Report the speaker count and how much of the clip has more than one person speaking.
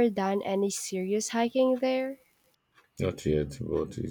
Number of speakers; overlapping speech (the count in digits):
2, no overlap